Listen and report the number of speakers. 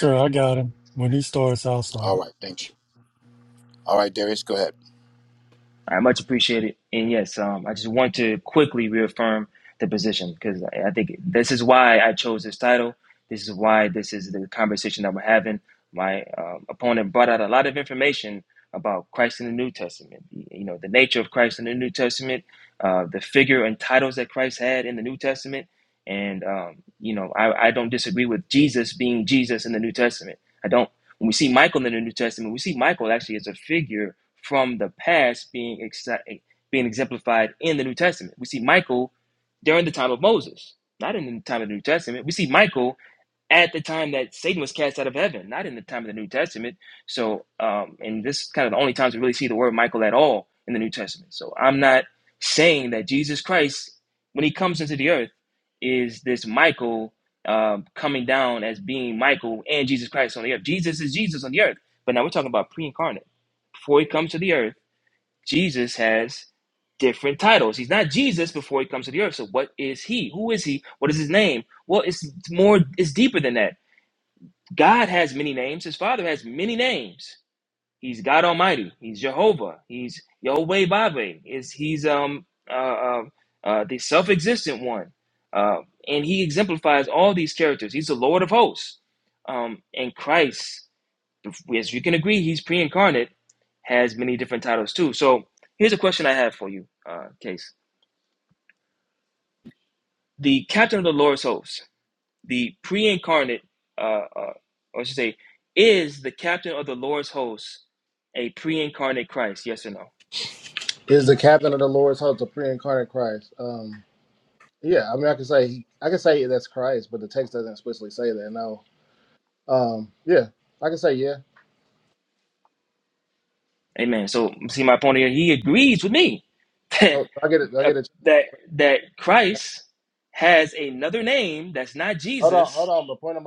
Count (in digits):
4